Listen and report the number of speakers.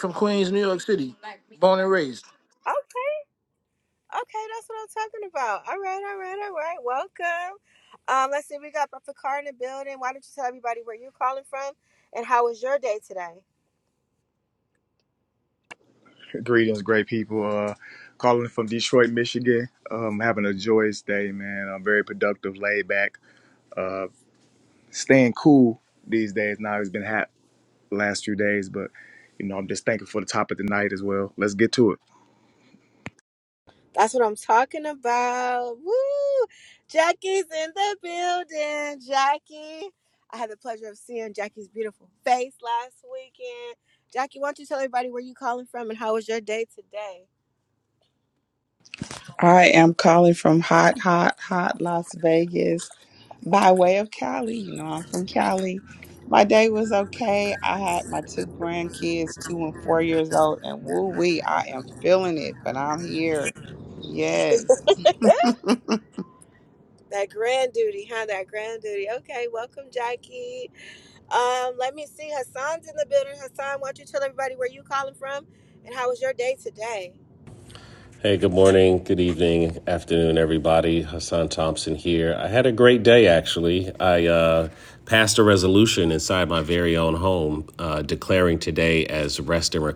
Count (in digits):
5